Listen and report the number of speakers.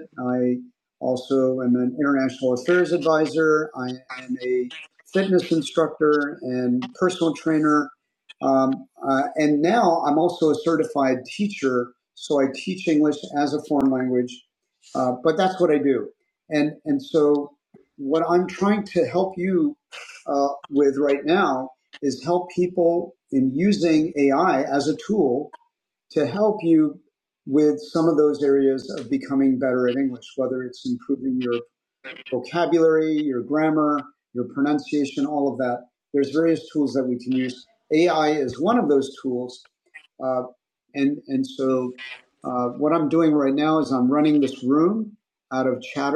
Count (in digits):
1